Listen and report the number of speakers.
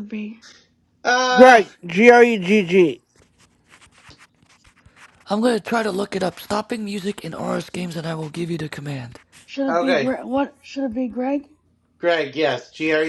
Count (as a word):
four